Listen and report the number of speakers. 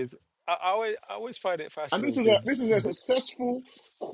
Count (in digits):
2